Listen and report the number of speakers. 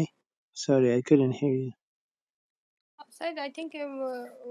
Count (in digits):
2